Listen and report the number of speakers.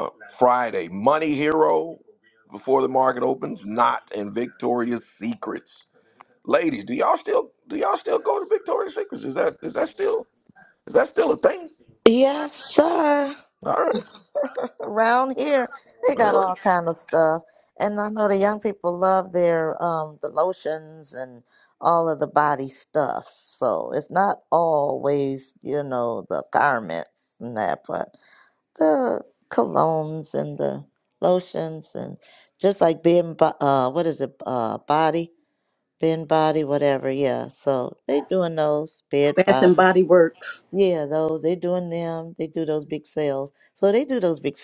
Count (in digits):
3